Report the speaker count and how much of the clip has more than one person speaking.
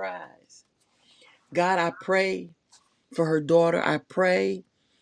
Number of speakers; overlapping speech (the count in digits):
1, no overlap